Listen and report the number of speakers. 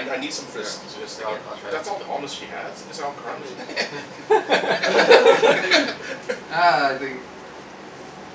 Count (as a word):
two